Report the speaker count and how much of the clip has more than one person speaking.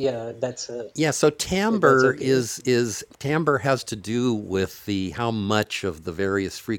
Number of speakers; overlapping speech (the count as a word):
two, about 11%